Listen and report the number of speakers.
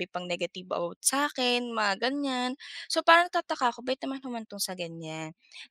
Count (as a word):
one